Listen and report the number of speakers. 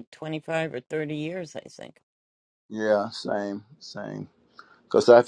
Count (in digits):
2